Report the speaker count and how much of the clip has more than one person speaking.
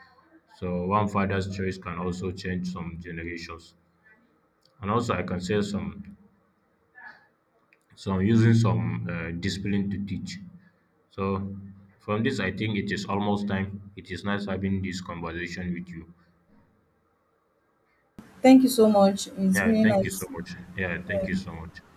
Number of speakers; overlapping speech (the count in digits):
2, about 4%